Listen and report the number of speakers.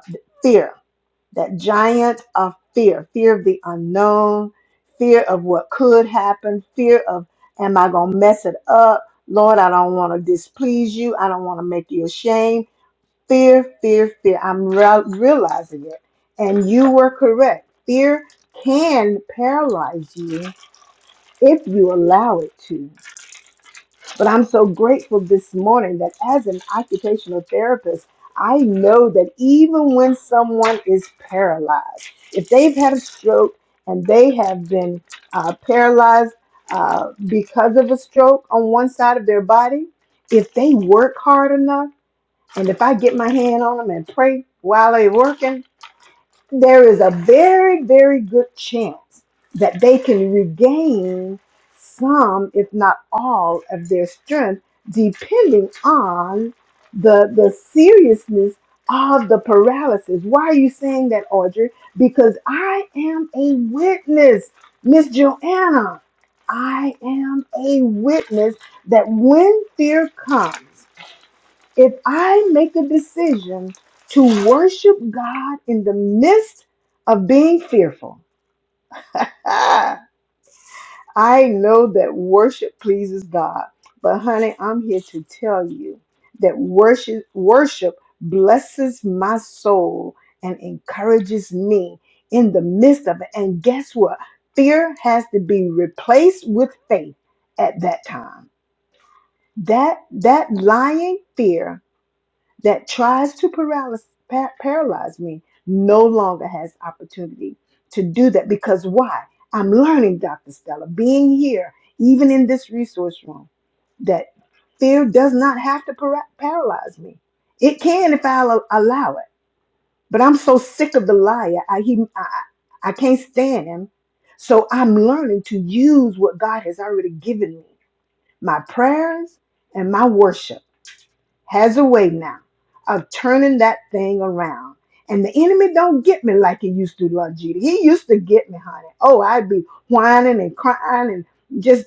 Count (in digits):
1